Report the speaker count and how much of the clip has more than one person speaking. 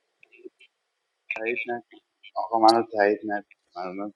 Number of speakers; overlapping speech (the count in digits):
1, no overlap